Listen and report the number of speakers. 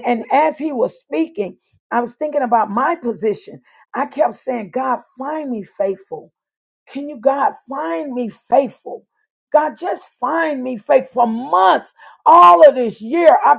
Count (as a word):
one